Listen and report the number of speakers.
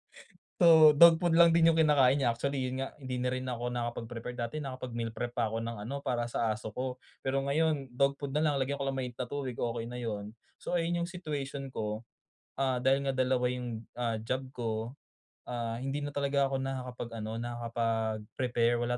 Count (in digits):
1